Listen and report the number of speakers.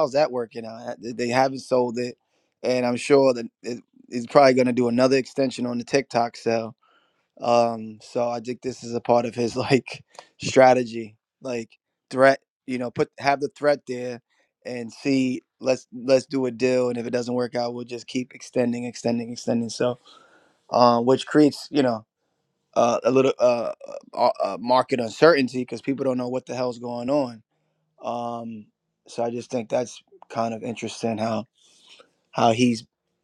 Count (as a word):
one